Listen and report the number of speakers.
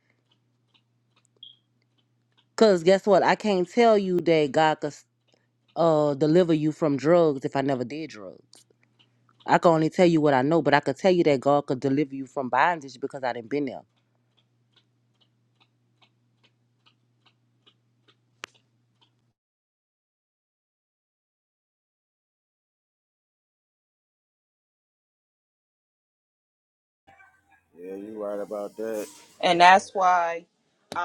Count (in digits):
3